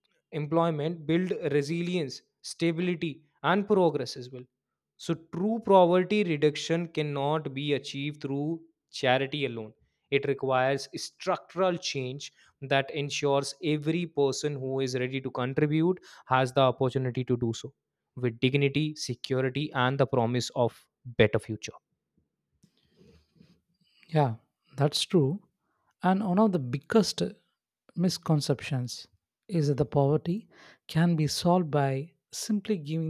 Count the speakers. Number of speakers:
two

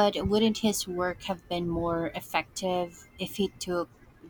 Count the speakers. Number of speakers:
one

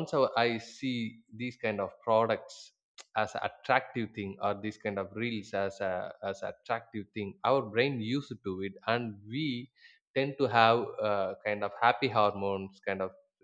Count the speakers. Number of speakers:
one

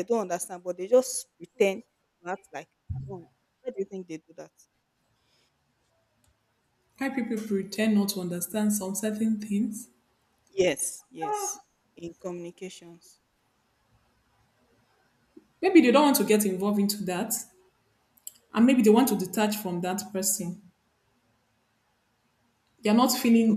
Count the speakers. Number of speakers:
two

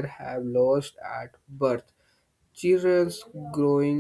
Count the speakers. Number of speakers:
one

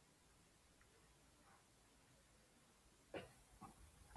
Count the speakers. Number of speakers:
zero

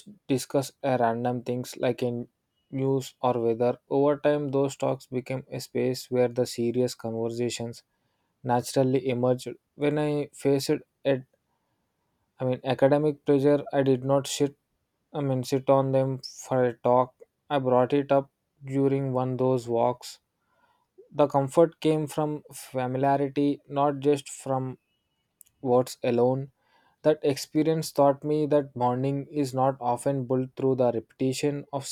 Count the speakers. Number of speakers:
one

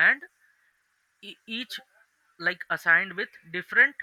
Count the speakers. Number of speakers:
one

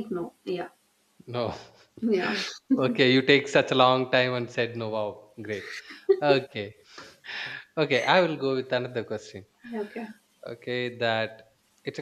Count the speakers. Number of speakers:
two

